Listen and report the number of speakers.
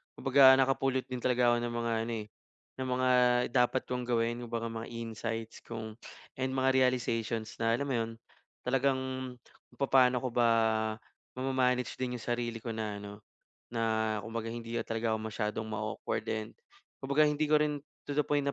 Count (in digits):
1